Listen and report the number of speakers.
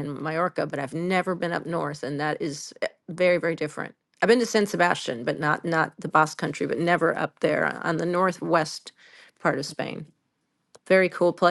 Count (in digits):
1